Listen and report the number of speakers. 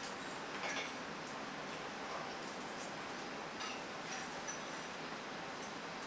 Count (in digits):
0